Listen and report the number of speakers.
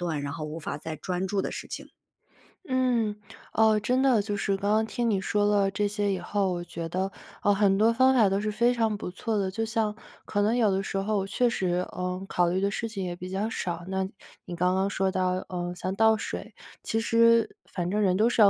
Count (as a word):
two